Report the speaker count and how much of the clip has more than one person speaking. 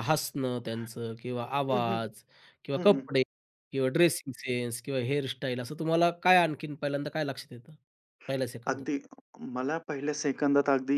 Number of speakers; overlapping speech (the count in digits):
2, about 7%